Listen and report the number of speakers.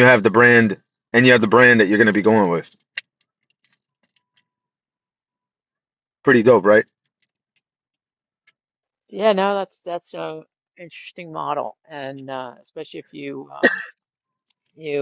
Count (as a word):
two